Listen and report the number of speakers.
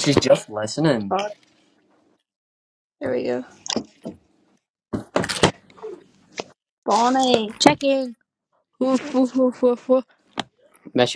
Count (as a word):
three